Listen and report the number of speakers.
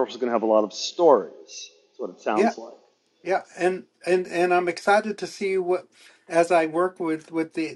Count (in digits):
2